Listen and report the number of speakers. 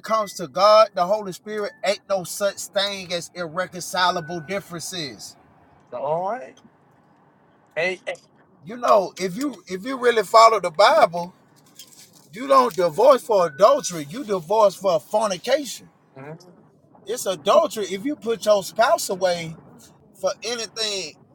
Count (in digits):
2